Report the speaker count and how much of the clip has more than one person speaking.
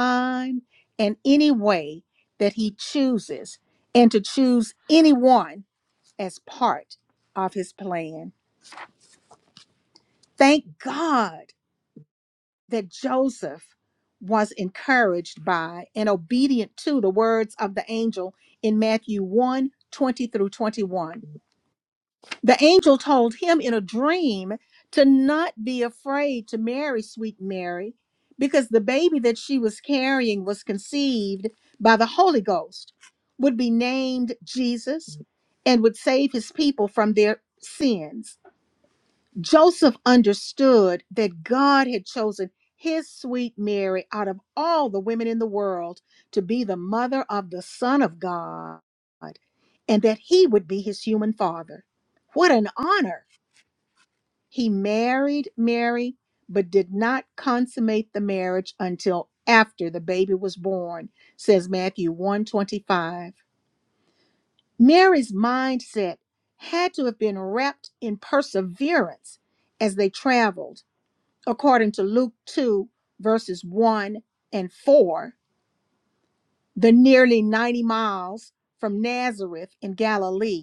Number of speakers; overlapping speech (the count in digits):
1, no overlap